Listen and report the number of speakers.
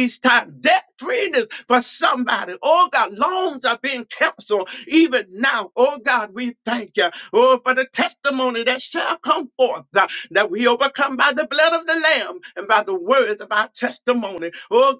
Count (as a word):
one